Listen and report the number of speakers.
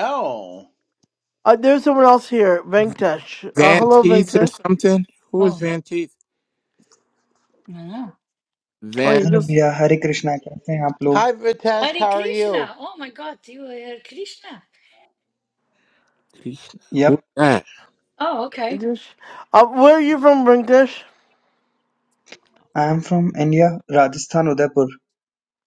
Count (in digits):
5